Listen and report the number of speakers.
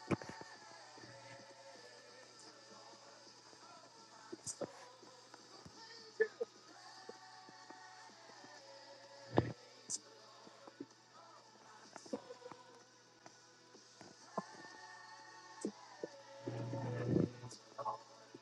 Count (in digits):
0